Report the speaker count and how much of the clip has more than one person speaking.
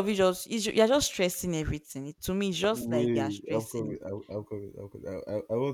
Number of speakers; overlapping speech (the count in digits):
2, about 21%